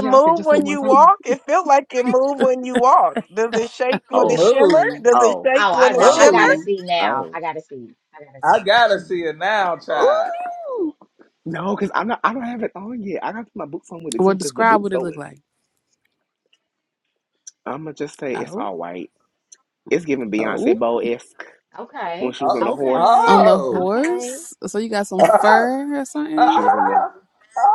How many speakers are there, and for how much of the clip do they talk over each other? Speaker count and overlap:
5, about 32%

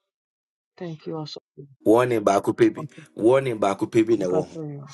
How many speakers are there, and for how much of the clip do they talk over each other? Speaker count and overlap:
2, about 11%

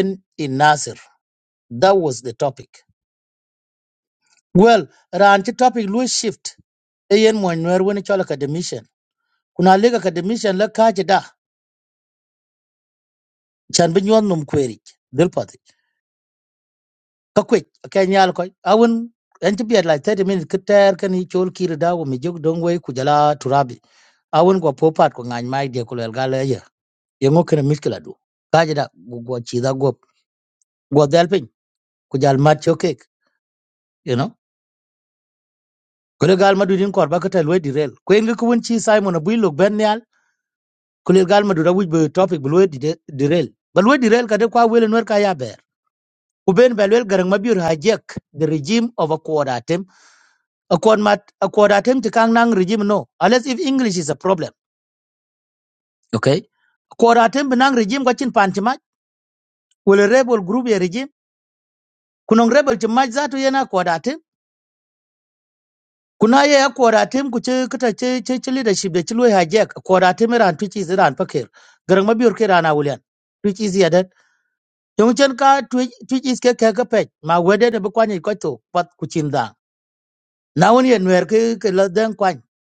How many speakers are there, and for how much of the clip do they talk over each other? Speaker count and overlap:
1, no overlap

